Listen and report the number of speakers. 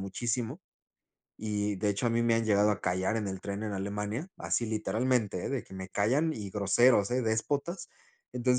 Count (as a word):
one